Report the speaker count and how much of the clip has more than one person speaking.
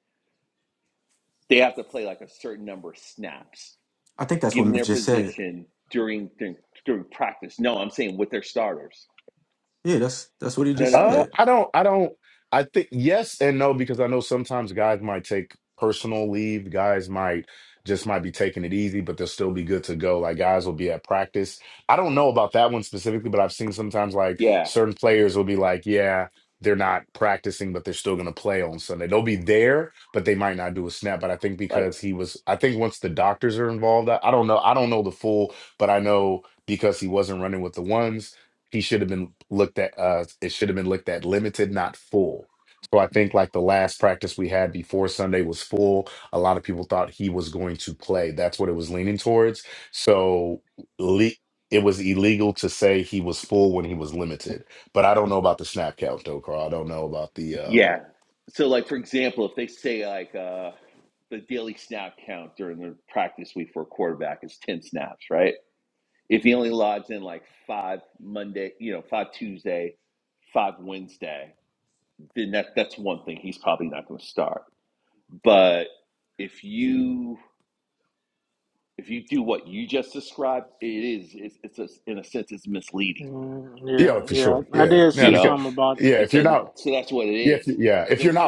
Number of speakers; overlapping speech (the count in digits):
4, about 5%